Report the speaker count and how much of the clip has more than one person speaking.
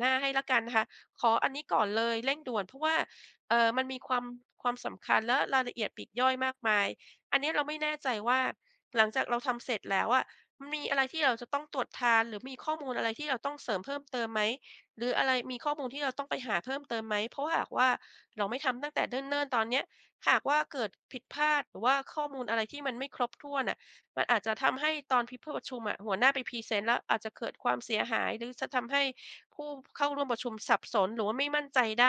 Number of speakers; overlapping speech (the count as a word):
one, no overlap